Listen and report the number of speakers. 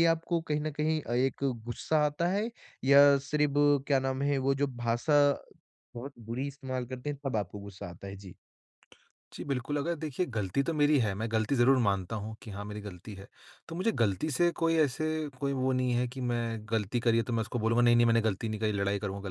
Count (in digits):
2